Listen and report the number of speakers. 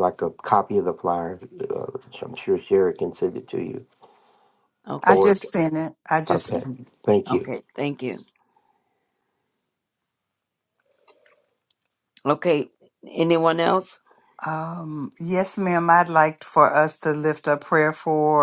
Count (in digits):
3